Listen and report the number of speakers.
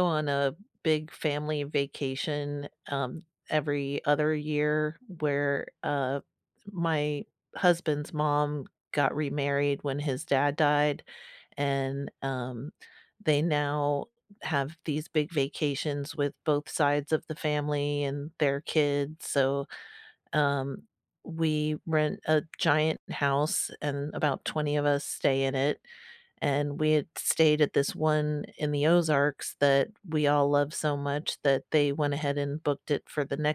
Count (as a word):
one